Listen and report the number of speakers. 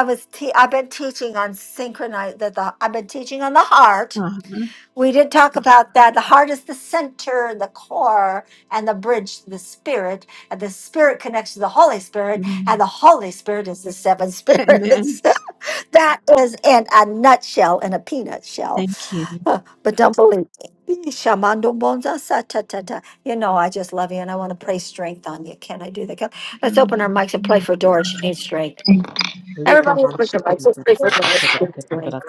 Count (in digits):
3